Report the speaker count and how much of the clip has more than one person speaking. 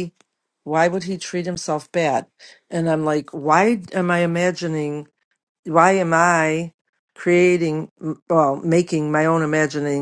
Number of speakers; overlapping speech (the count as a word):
one, no overlap